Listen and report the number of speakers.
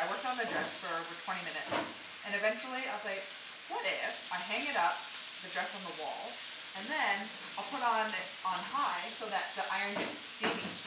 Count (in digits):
1